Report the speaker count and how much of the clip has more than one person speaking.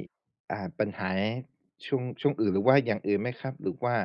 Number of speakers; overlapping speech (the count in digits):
1, no overlap